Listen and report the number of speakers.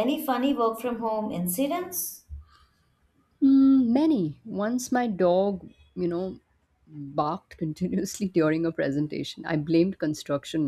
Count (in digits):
2